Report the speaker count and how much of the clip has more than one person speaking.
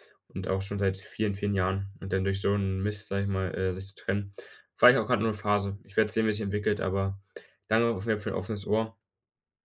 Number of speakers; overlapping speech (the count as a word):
one, no overlap